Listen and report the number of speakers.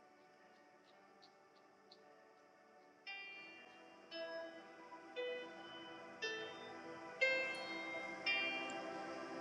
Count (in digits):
0